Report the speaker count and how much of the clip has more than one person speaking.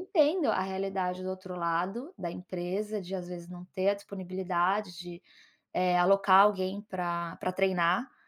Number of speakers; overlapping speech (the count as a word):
one, no overlap